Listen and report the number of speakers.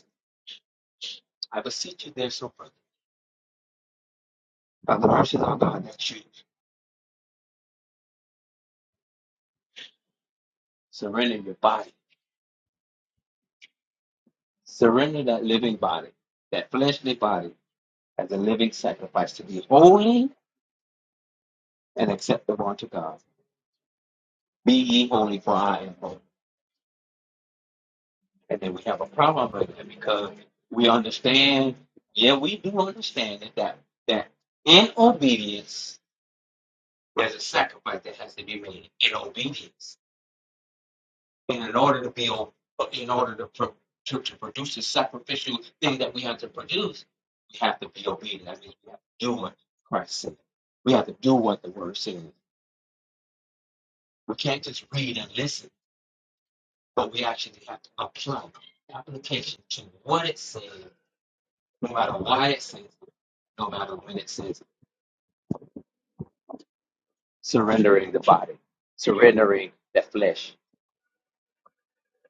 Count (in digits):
1